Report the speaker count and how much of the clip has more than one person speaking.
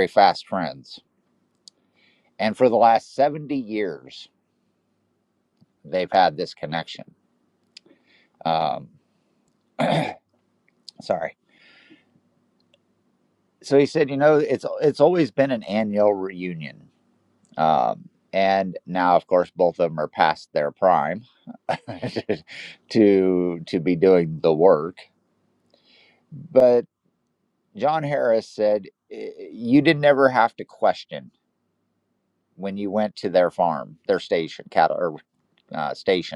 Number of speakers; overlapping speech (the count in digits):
1, no overlap